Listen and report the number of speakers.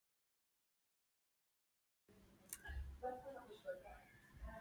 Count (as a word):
zero